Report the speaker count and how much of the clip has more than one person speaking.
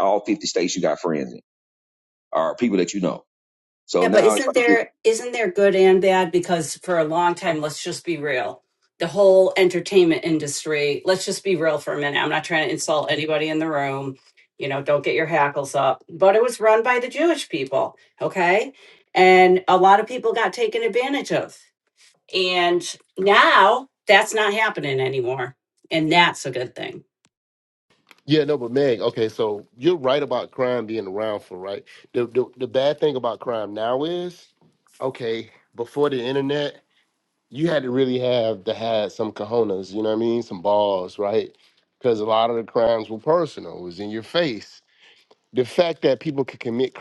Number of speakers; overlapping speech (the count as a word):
three, about 2%